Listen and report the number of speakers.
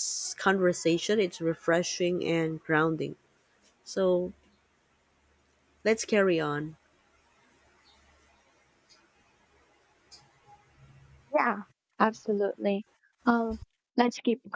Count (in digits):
2